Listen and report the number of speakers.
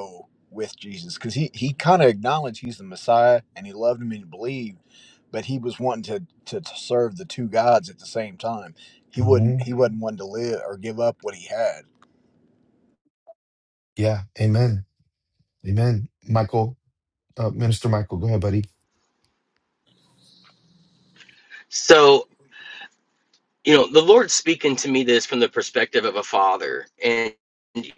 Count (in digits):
3